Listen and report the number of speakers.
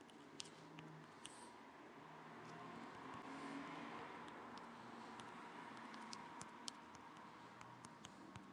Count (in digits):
0